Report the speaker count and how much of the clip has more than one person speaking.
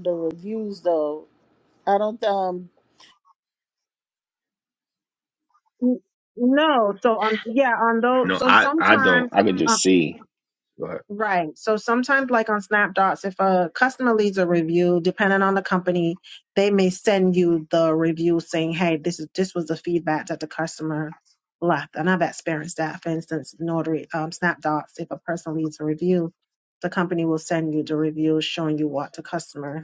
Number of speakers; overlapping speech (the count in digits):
3, about 4%